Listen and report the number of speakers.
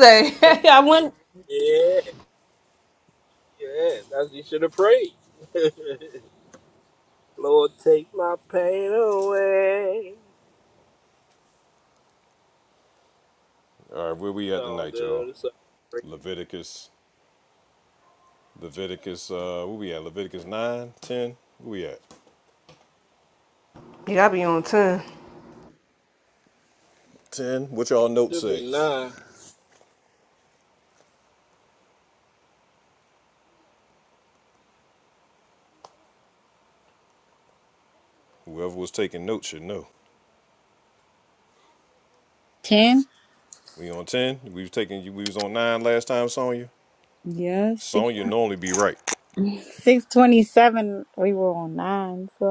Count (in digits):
4